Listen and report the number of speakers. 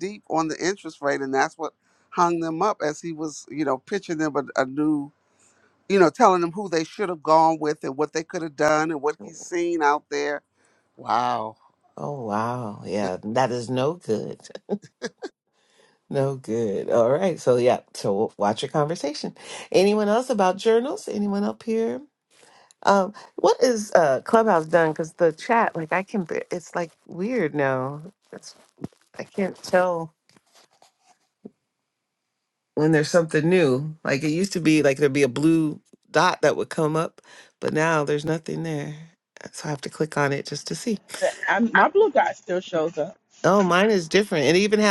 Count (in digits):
3